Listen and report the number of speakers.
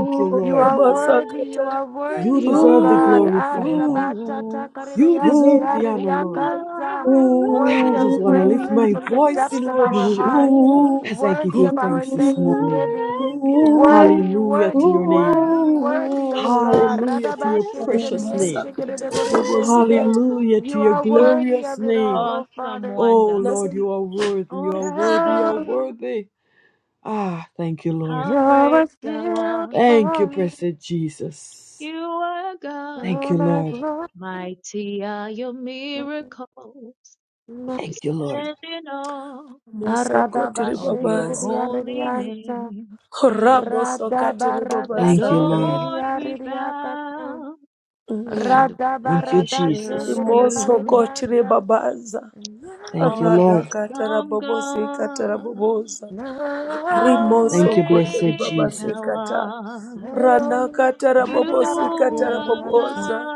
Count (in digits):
4